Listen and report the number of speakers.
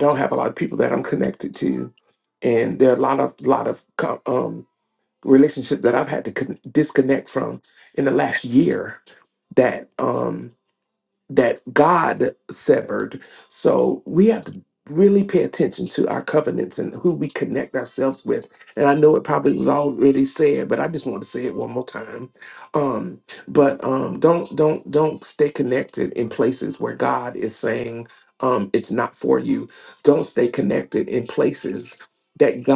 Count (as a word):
one